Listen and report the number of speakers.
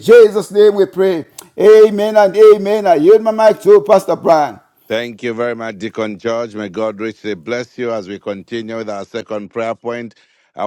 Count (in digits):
2